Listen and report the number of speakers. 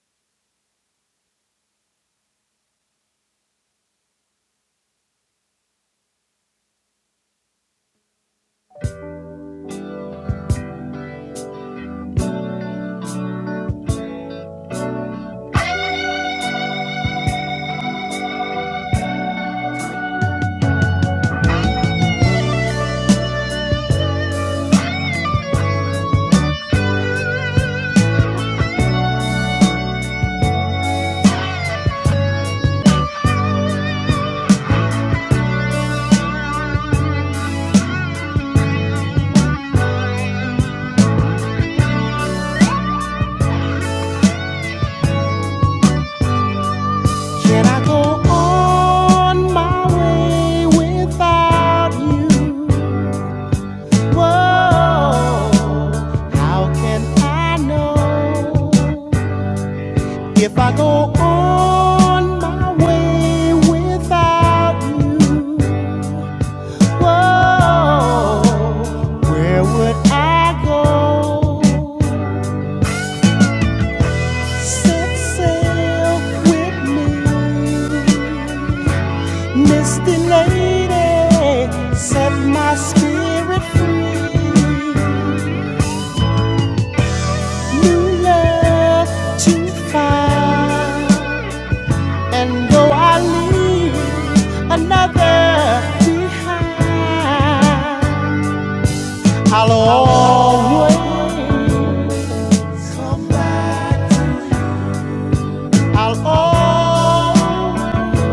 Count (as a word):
one